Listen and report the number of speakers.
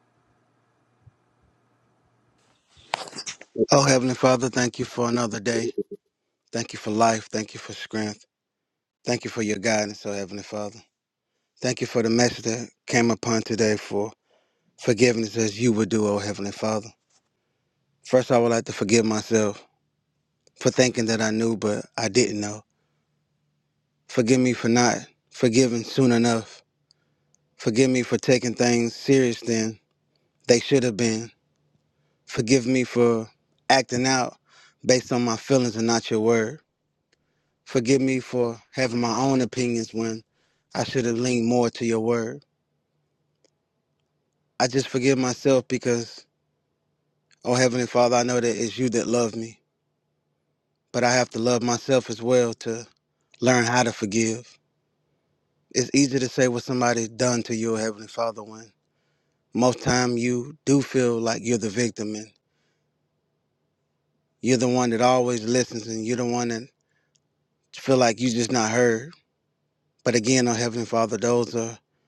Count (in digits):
1